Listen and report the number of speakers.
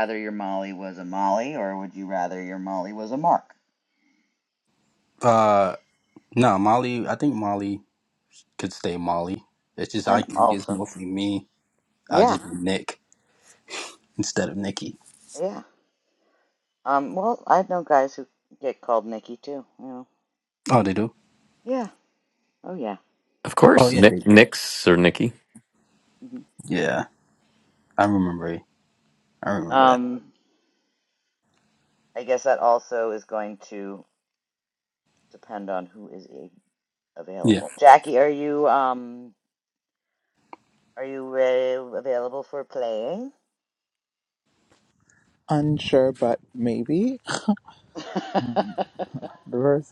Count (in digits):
4